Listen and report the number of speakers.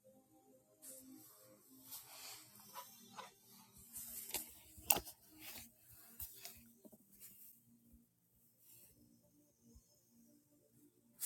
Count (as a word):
zero